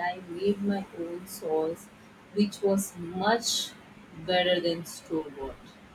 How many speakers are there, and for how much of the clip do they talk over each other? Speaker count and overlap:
one, no overlap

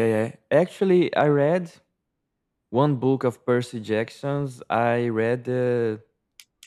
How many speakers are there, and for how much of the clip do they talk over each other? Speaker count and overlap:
one, no overlap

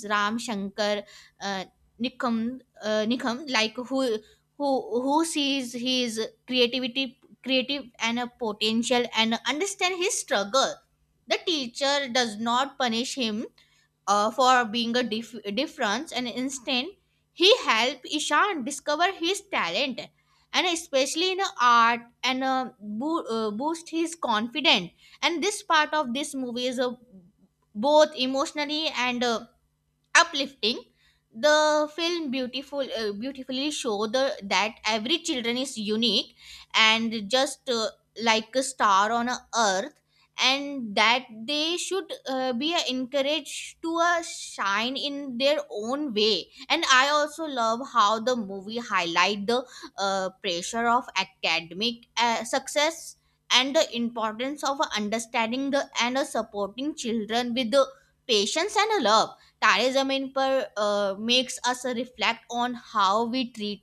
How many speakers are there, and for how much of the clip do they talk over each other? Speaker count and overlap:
one, no overlap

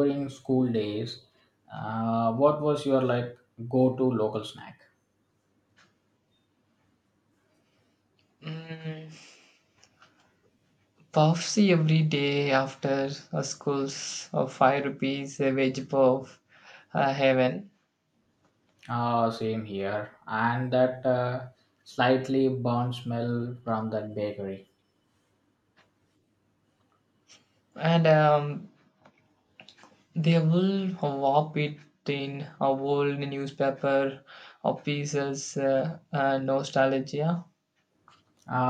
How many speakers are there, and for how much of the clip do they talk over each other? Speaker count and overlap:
two, no overlap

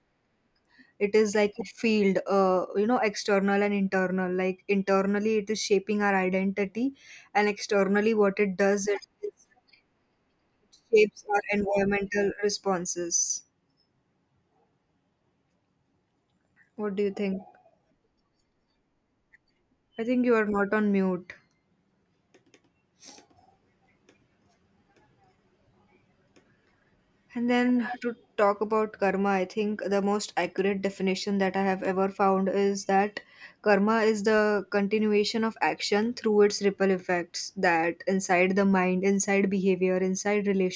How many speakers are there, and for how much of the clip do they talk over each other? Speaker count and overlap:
one, no overlap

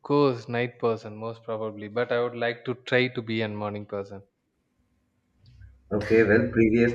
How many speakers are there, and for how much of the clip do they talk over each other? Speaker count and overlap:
two, no overlap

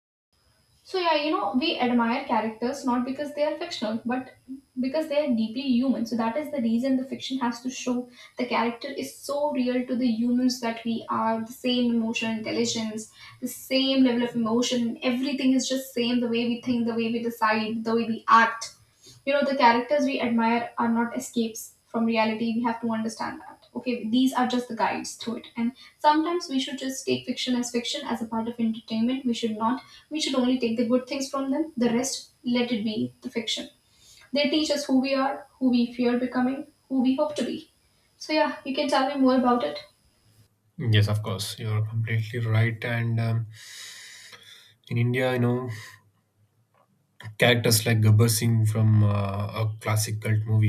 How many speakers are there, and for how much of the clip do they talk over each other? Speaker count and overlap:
two, no overlap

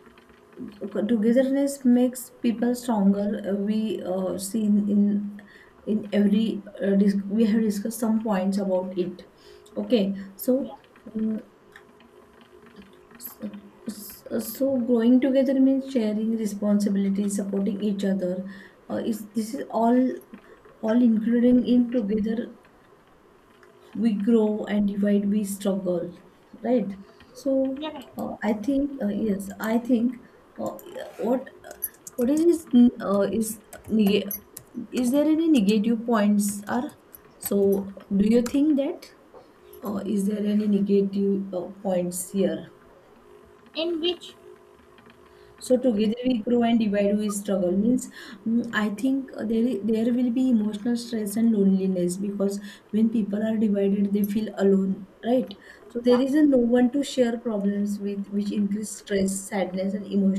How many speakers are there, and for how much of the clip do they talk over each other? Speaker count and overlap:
two, about 1%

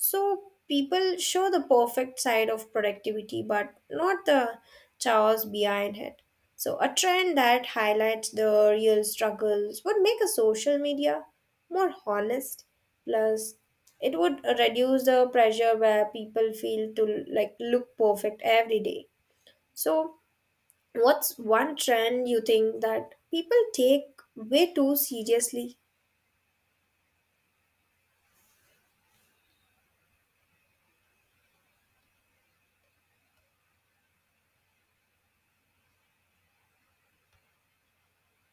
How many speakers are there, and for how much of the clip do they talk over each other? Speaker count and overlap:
one, no overlap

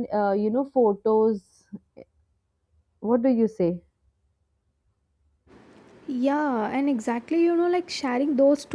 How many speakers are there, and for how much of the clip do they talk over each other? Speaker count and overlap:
two, no overlap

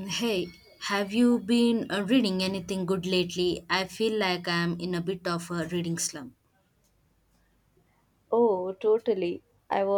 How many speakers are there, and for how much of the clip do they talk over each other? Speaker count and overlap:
two, no overlap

